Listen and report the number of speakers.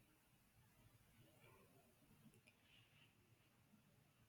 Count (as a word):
zero